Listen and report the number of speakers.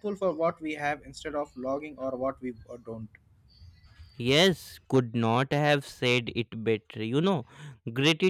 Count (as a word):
two